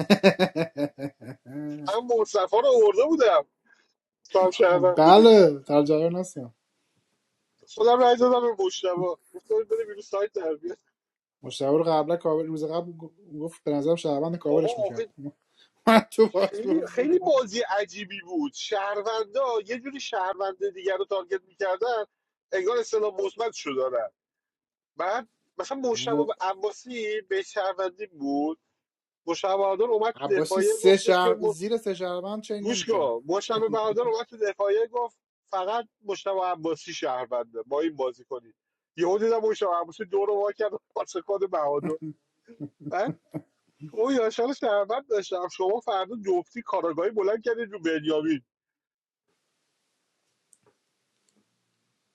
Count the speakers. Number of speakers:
2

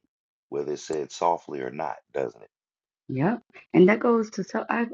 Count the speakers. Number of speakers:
2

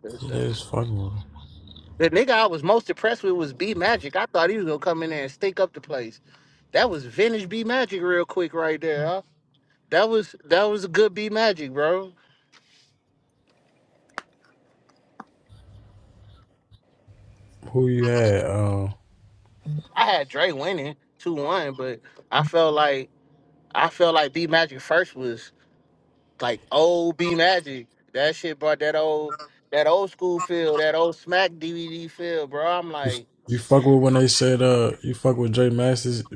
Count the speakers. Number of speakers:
2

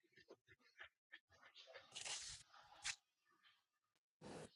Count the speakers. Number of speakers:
0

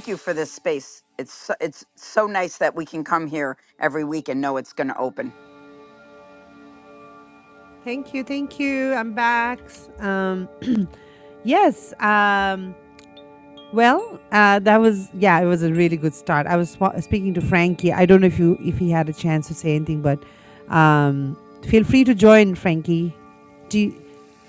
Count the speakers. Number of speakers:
2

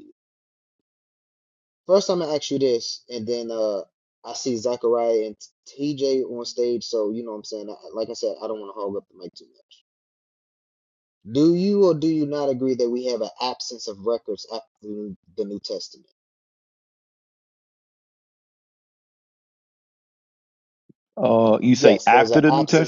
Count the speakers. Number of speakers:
2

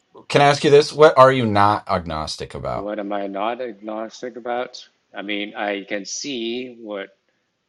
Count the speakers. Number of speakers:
2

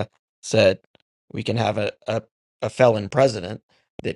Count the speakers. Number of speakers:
1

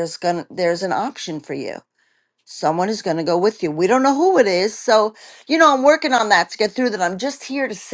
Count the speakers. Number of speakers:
1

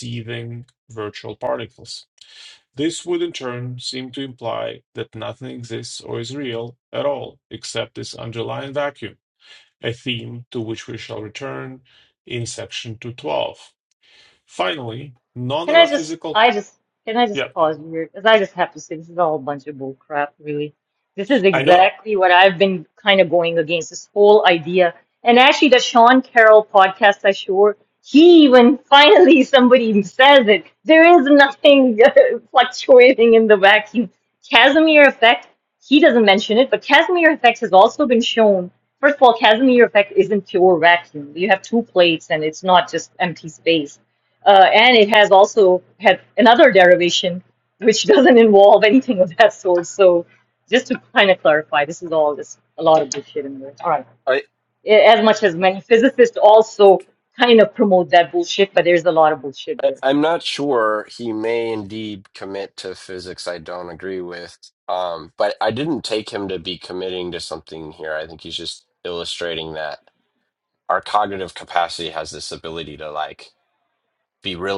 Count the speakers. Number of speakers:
3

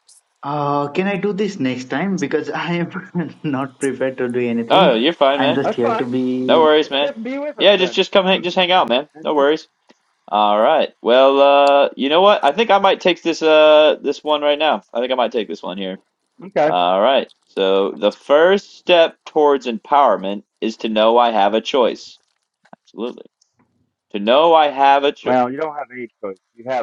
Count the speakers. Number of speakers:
3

